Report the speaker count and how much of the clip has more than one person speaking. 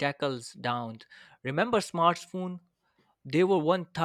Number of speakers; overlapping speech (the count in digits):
1, no overlap